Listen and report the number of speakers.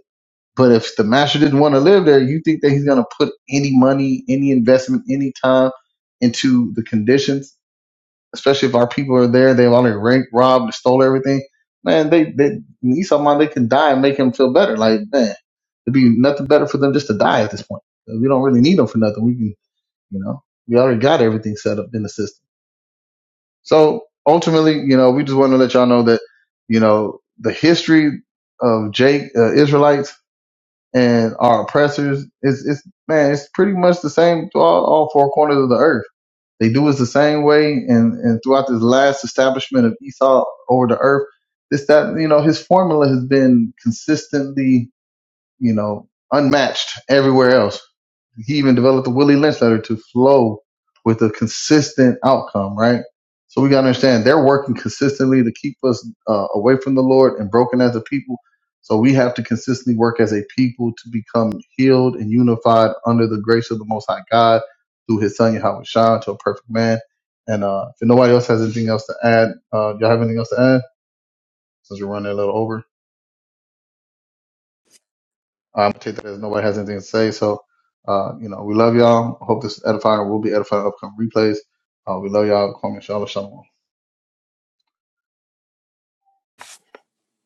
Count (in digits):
1